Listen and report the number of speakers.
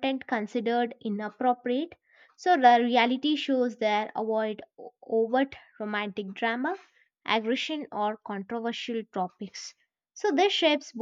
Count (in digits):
1